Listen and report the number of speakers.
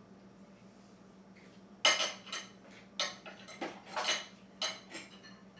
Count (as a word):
zero